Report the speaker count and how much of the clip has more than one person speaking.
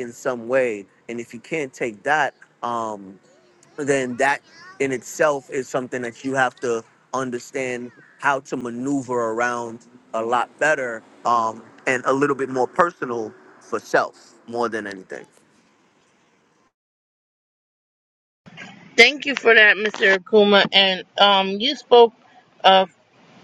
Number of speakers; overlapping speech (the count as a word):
two, no overlap